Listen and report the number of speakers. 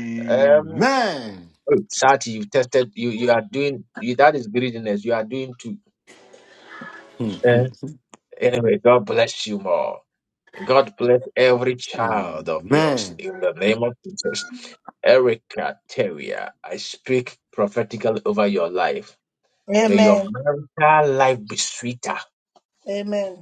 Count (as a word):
three